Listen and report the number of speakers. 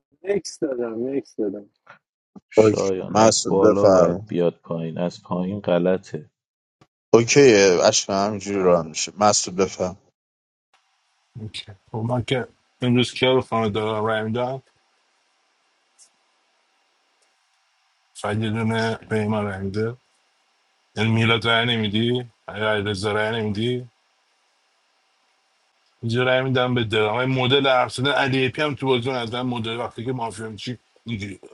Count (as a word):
four